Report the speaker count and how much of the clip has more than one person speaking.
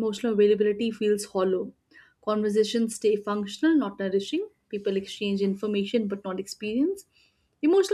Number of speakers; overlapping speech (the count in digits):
1, no overlap